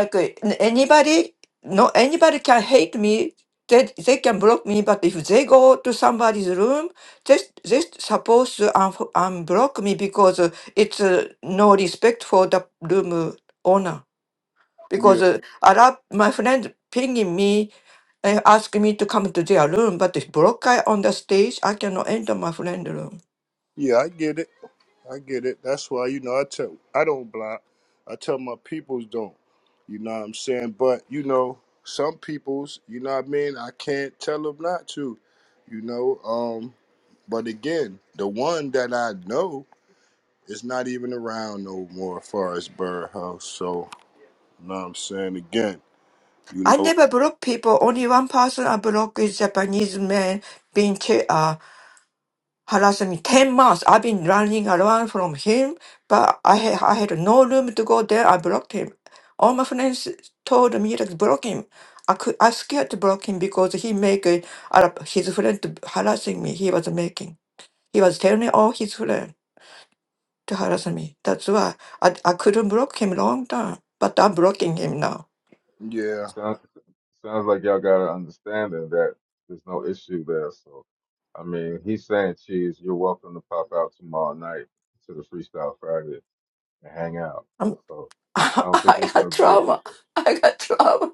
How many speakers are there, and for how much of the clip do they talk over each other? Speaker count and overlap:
3, about 2%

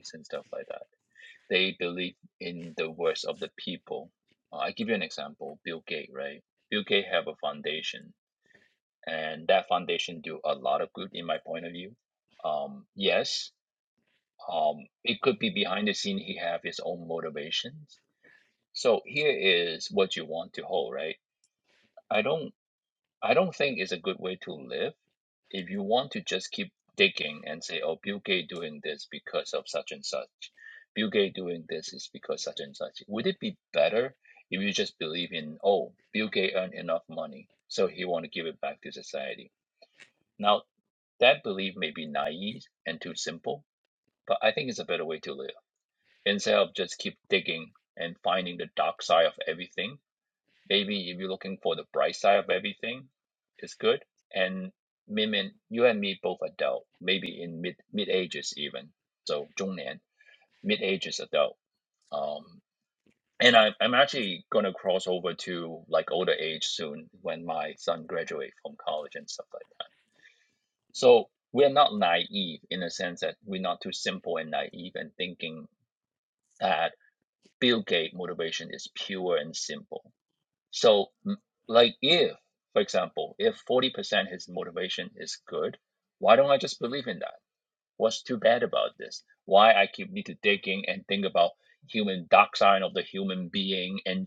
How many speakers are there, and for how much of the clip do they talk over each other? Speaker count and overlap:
1, no overlap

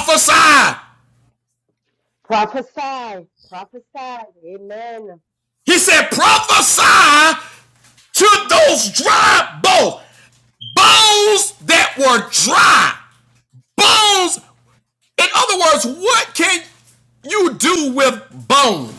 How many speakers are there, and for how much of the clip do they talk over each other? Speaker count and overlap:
2, no overlap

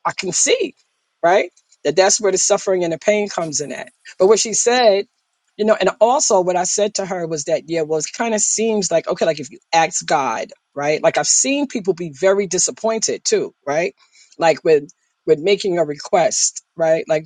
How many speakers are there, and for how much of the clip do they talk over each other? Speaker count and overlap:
1, no overlap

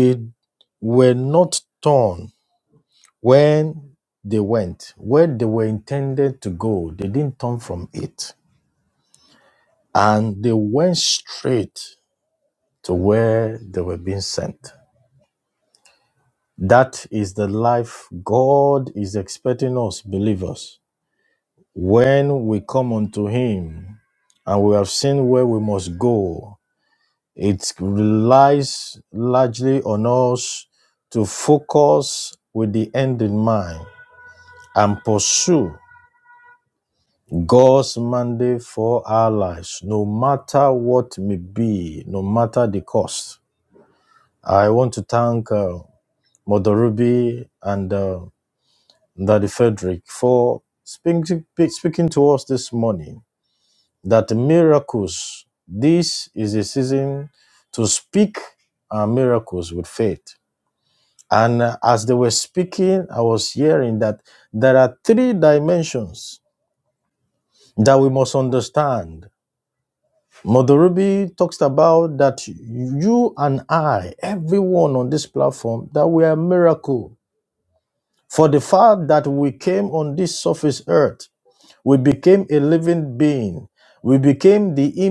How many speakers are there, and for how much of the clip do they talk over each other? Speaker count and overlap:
1, no overlap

